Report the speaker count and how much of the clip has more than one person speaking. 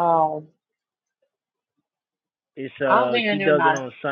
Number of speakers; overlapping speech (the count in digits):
2, about 23%